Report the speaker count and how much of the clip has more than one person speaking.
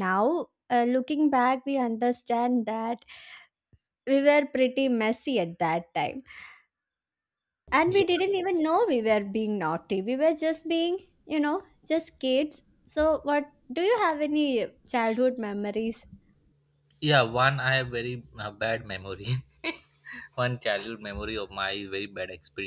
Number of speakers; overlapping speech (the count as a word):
two, about 1%